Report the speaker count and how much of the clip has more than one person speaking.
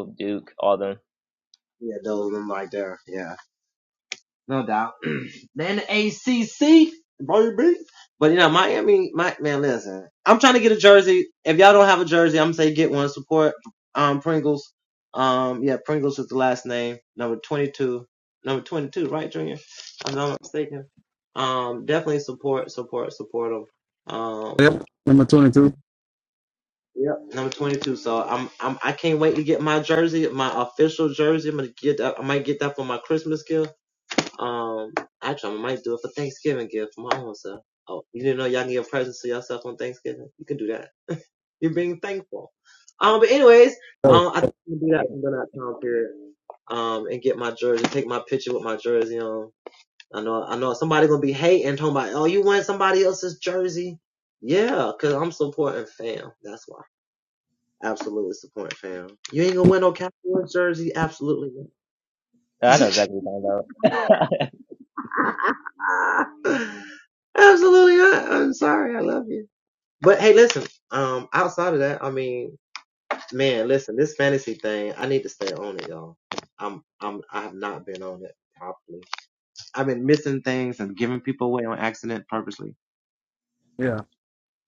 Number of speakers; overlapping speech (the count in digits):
3, about 1%